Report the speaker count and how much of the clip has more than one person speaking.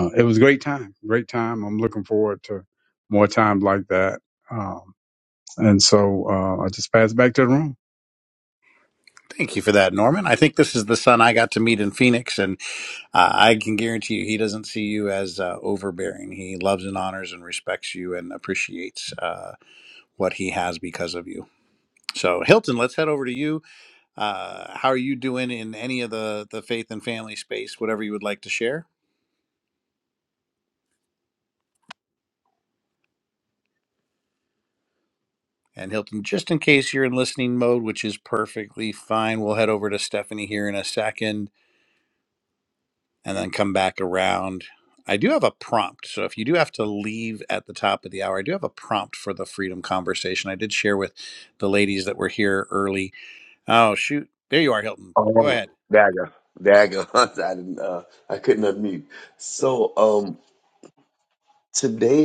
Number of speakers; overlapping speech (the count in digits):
3, about 1%